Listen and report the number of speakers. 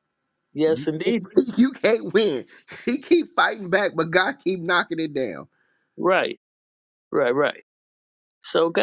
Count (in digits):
2